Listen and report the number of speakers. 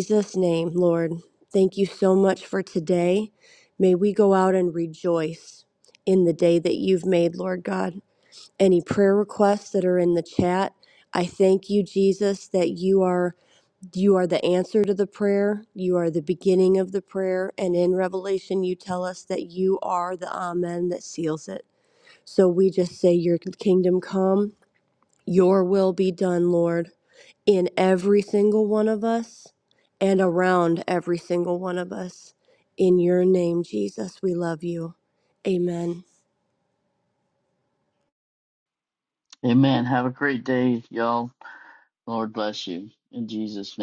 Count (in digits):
2